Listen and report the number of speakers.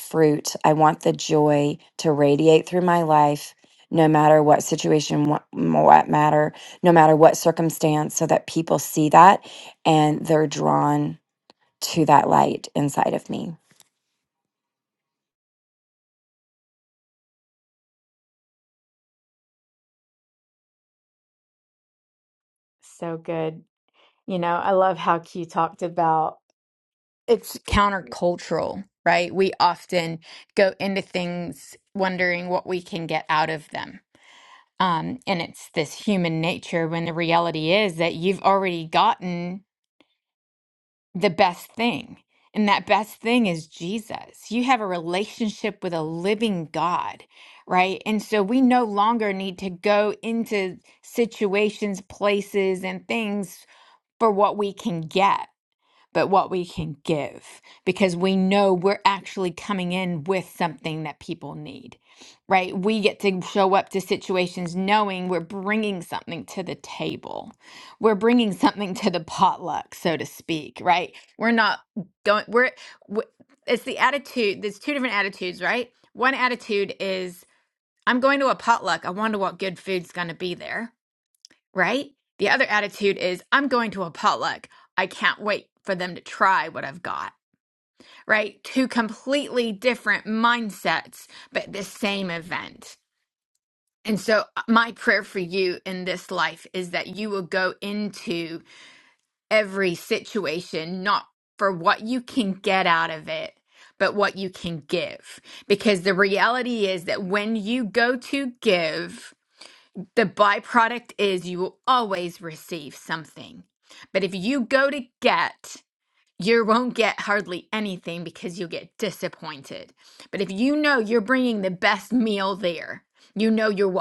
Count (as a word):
two